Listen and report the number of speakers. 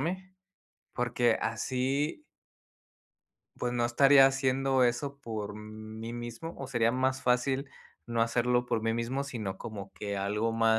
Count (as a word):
one